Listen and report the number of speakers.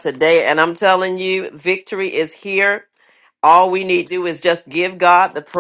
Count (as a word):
one